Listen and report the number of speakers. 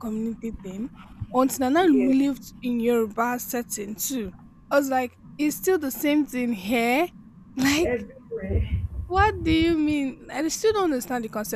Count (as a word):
two